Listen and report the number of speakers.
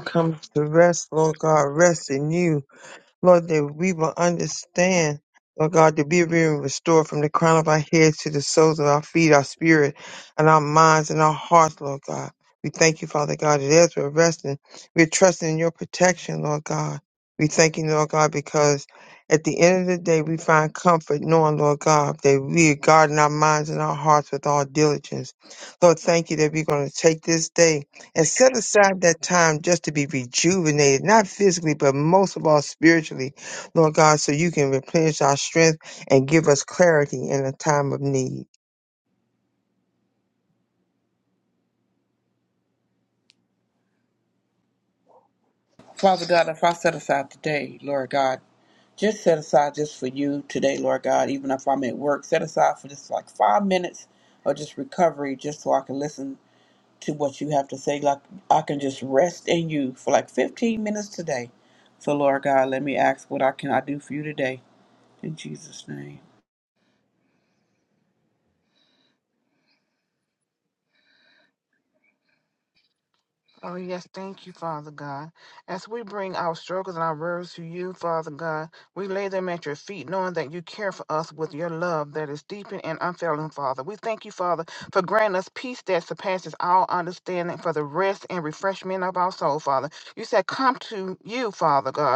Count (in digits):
3